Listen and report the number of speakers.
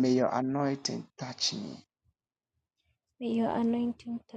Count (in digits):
2